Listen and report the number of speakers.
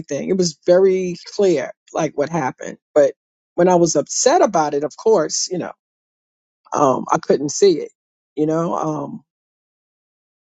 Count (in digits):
1